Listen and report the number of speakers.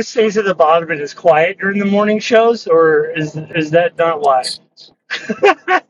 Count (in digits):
1